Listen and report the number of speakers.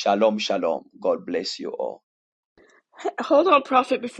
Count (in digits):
2